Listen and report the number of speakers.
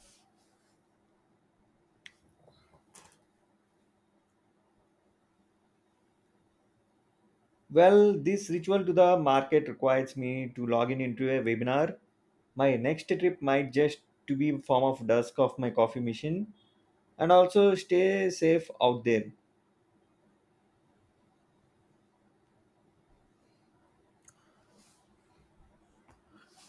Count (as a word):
one